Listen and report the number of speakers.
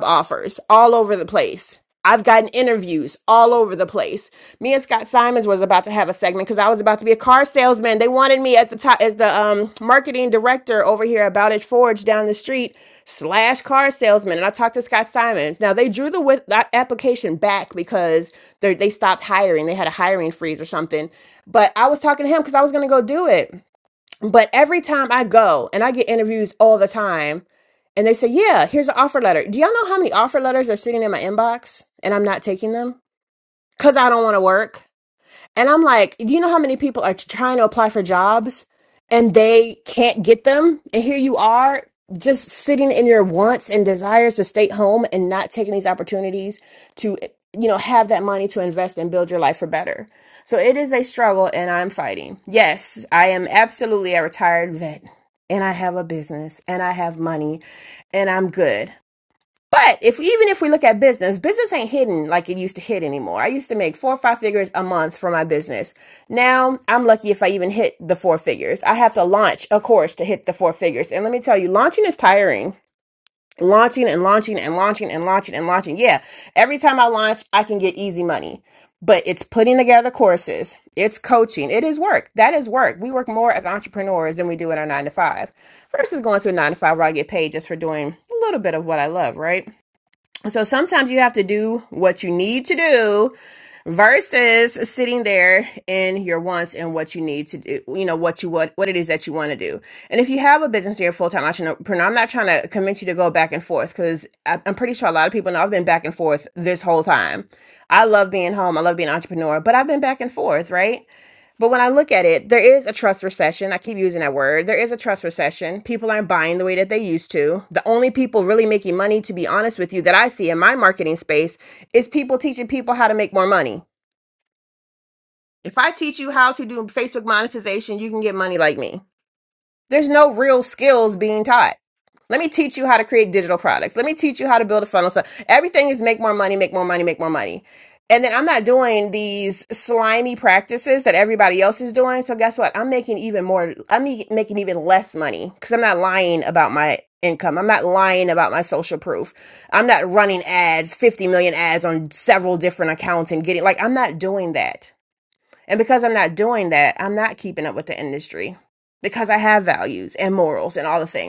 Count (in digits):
1